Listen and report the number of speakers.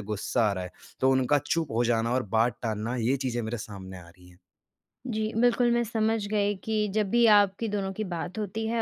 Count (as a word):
two